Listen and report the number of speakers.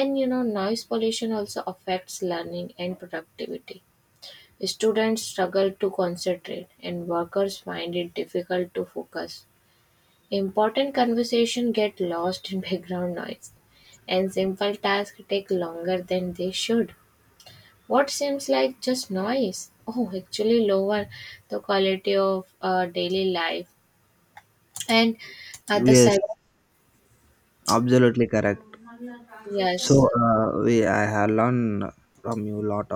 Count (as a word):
two